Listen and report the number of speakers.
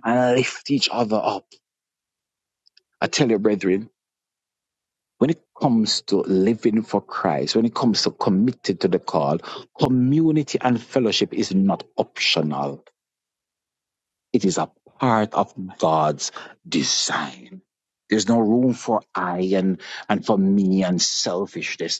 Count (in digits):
1